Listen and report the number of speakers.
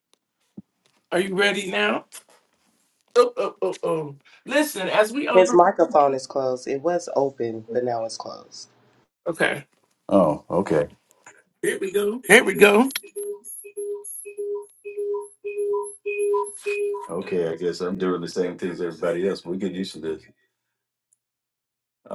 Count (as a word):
three